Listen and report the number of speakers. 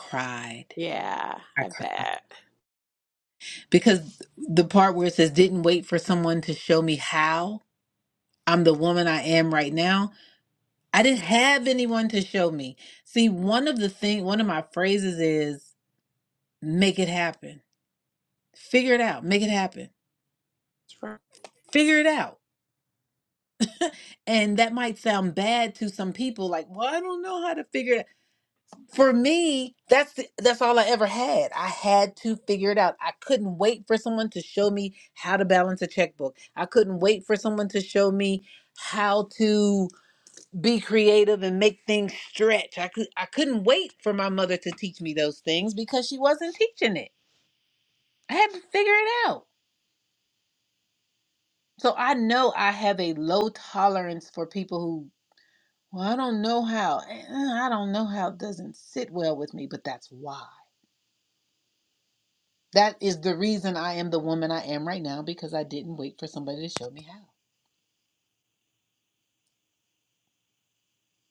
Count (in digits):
2